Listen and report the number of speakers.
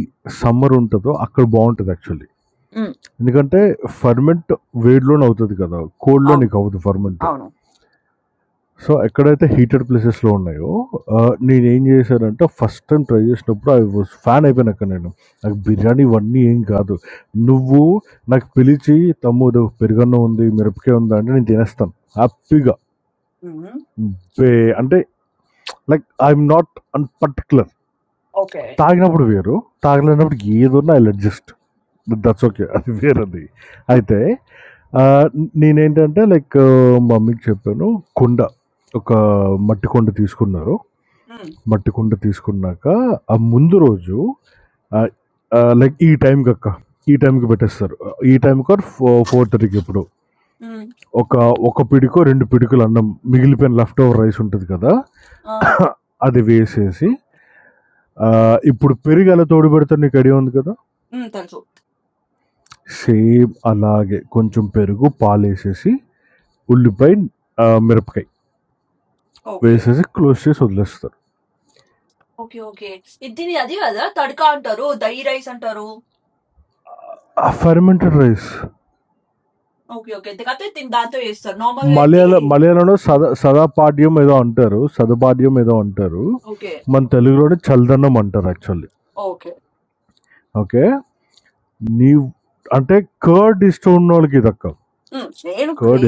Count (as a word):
two